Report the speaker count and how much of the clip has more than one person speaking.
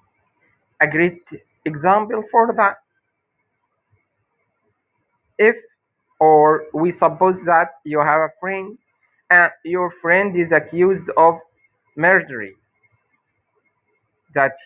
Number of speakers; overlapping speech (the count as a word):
one, no overlap